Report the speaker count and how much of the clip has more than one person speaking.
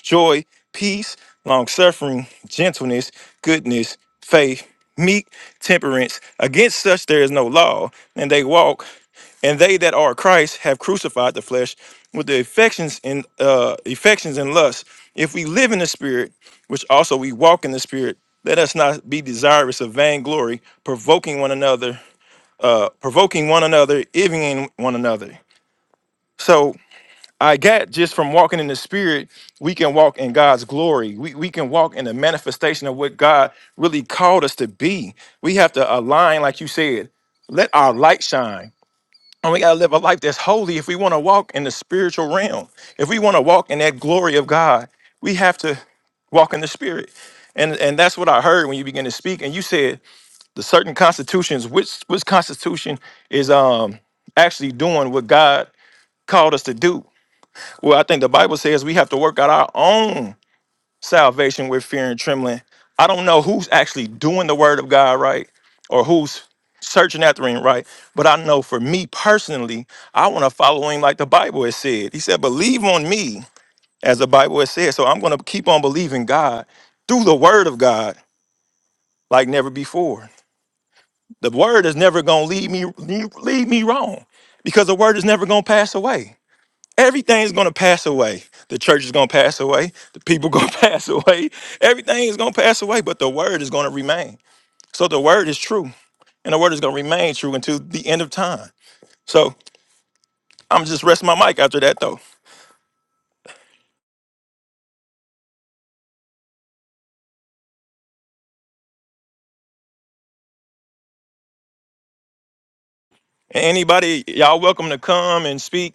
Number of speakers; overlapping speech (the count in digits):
1, no overlap